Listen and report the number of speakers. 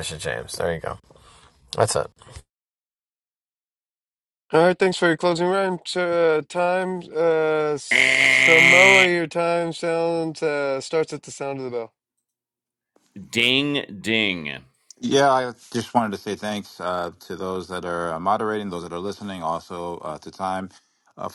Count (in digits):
4